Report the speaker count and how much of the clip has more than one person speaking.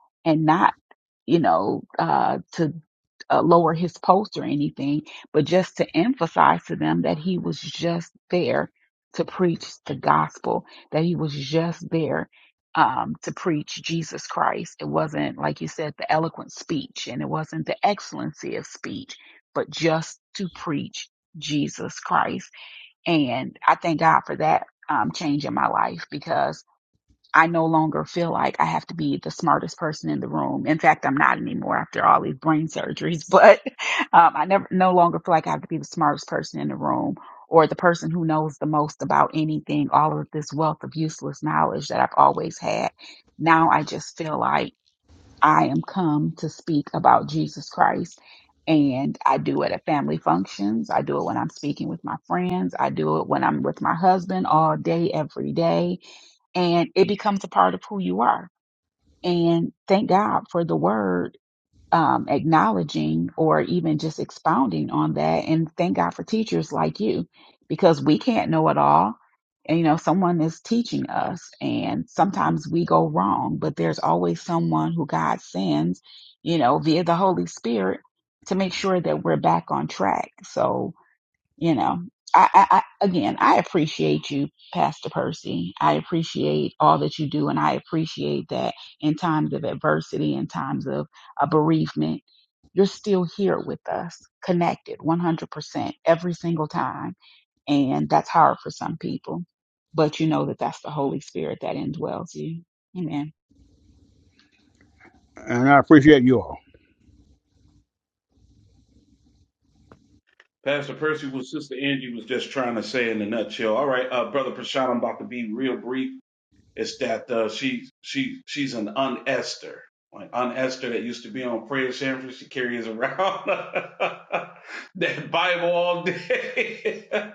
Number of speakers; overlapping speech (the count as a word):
three, no overlap